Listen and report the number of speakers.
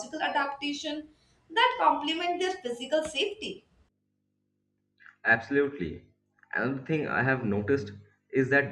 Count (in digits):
2